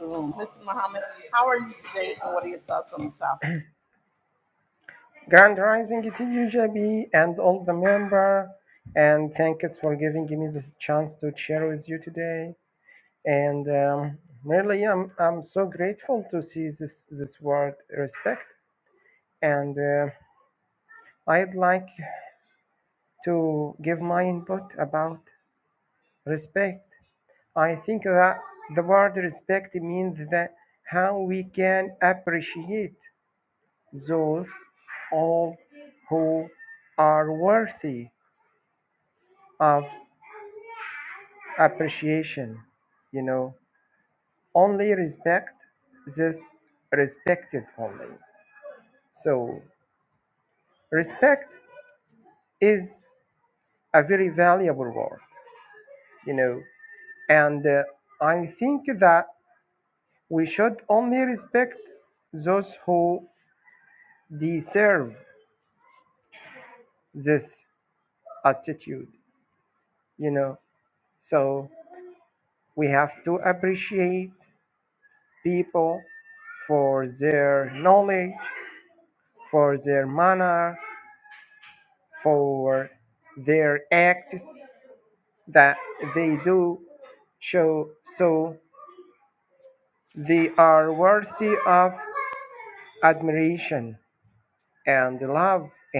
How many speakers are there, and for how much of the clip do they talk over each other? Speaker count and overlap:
two, no overlap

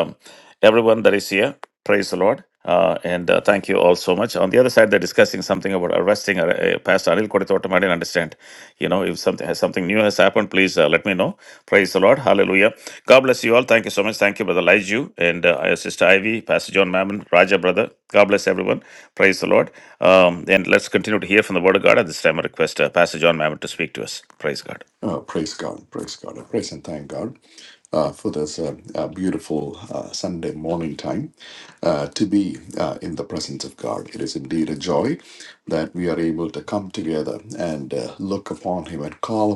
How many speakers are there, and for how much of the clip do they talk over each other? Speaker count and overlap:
two, no overlap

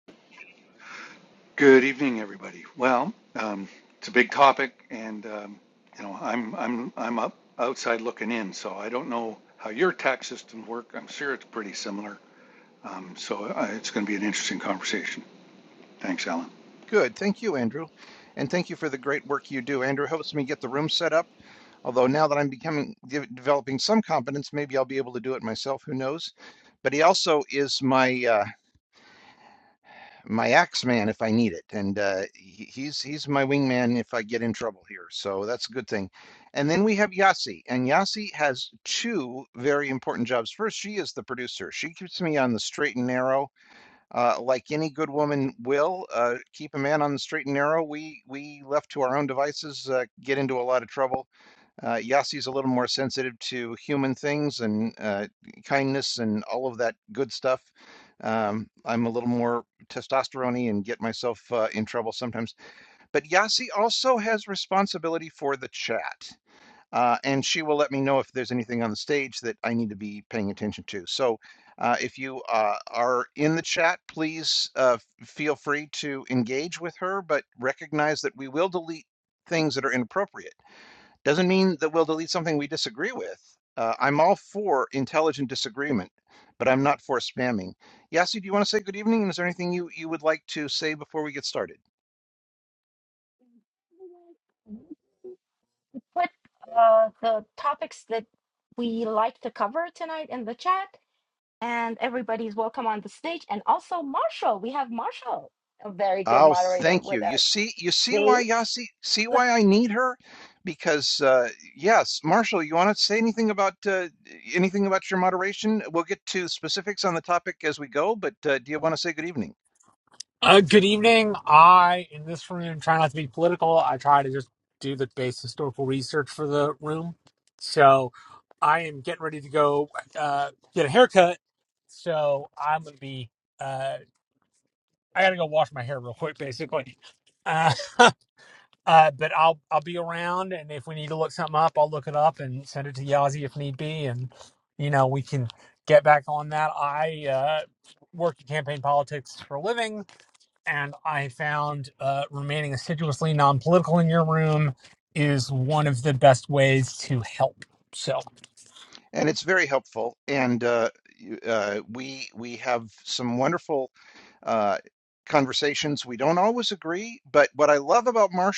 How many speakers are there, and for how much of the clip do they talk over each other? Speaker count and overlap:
four, about 1%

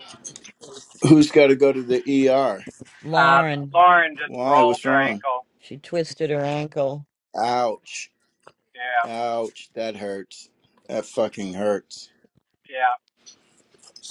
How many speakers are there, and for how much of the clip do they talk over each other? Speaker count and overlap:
three, about 11%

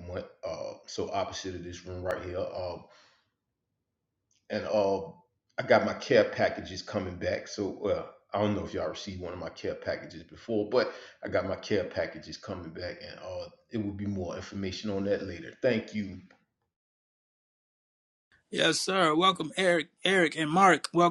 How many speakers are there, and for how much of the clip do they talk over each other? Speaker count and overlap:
two, no overlap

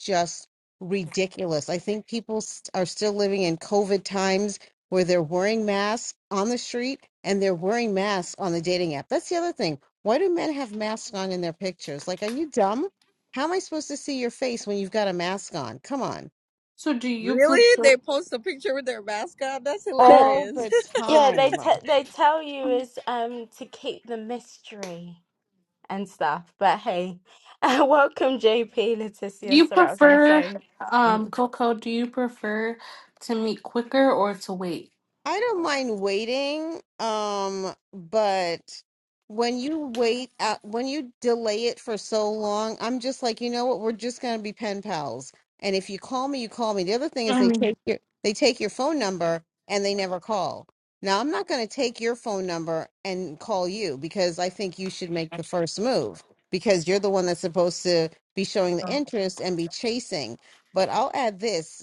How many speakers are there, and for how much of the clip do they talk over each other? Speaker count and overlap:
four, about 5%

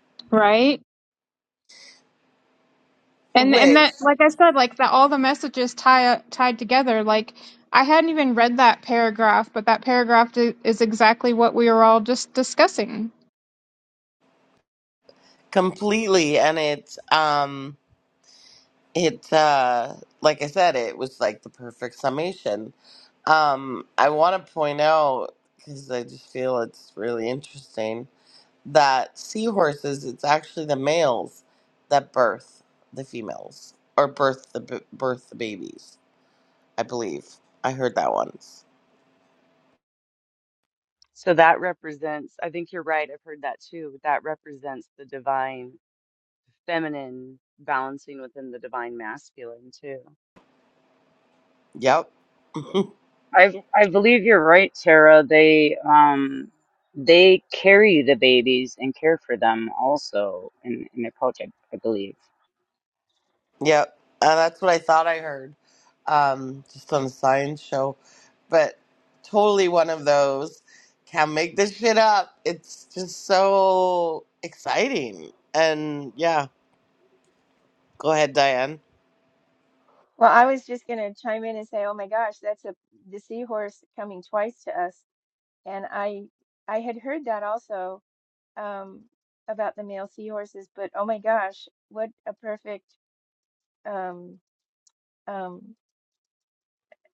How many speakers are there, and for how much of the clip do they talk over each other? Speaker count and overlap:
five, under 1%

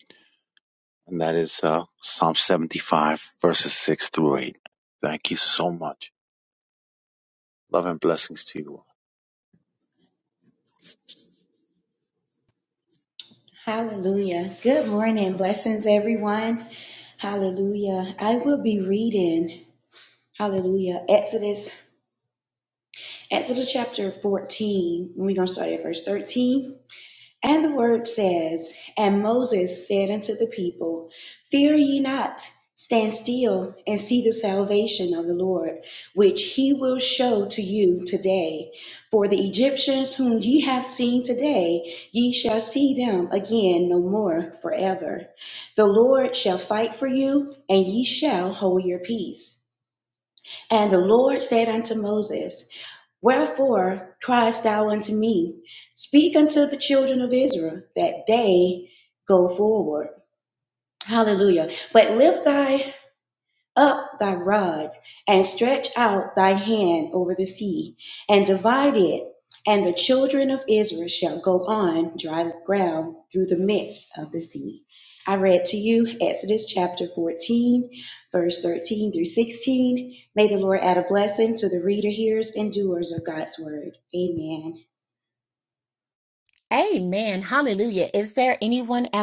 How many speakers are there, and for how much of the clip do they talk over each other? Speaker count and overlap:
three, no overlap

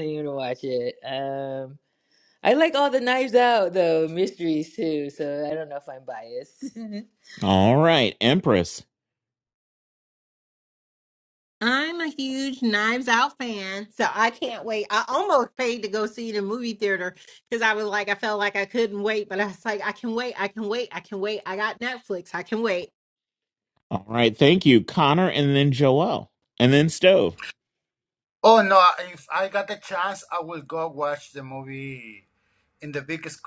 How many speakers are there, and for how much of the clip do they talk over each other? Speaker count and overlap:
four, no overlap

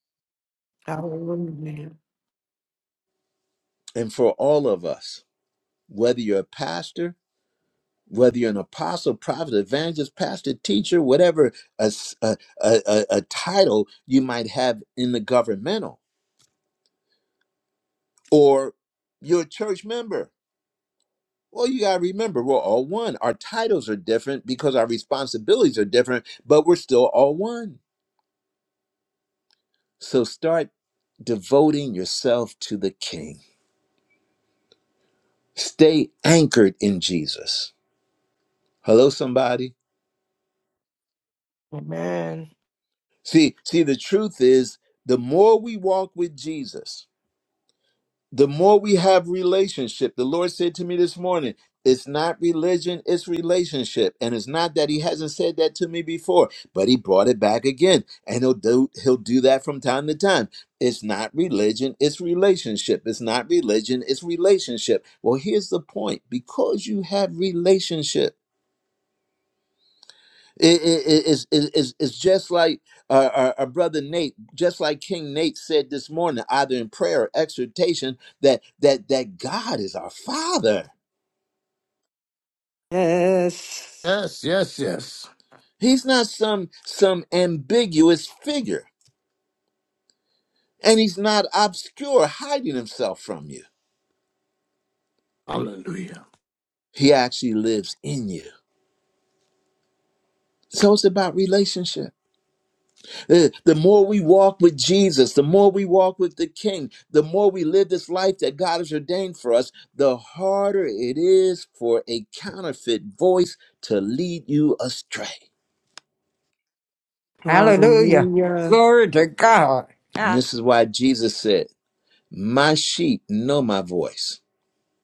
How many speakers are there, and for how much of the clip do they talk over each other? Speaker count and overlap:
five, about 1%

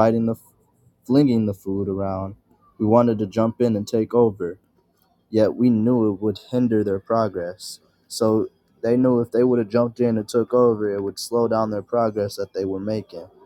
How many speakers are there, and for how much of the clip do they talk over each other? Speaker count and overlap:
one, no overlap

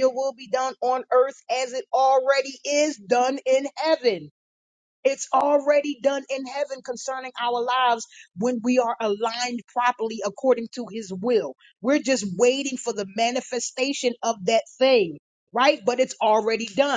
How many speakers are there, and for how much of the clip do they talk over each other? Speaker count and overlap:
one, no overlap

